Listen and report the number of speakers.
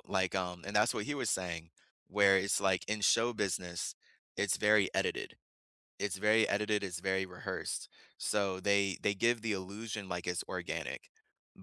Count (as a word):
one